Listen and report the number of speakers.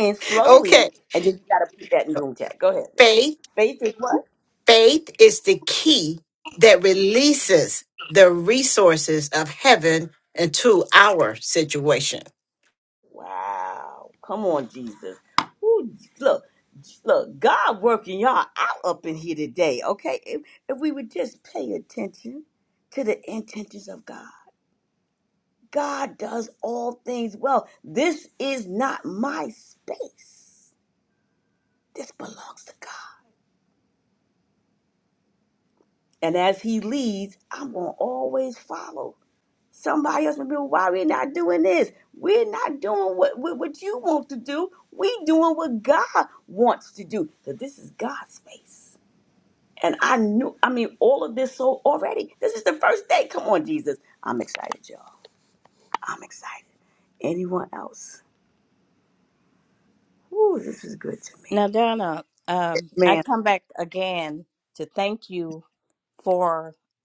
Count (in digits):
3